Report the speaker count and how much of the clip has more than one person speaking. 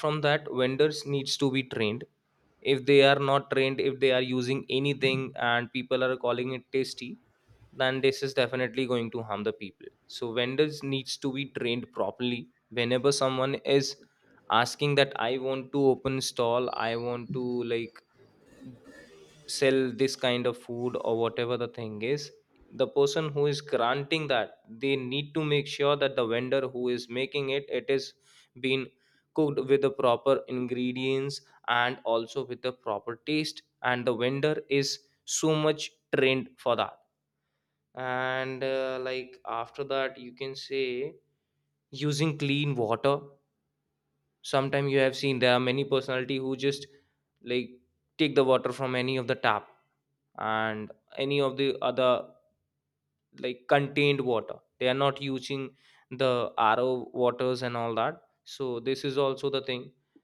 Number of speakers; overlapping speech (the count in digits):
1, no overlap